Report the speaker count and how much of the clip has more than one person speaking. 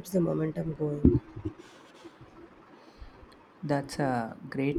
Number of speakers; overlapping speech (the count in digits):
2, no overlap